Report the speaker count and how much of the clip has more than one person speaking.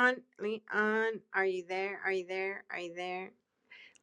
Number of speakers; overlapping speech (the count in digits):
1, no overlap